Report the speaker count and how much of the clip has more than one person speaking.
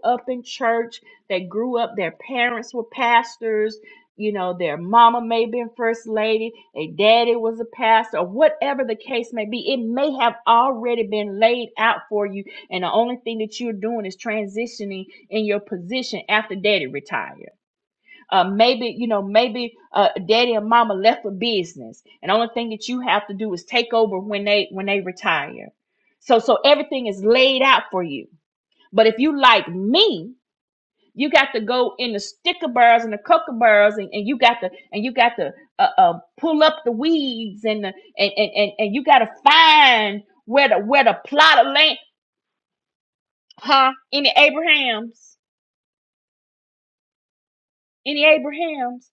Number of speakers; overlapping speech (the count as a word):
one, no overlap